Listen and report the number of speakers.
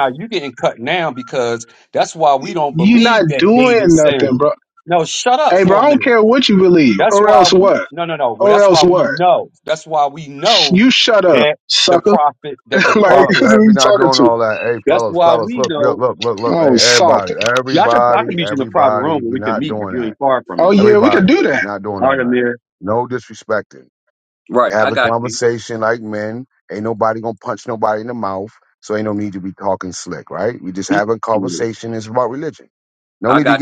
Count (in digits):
3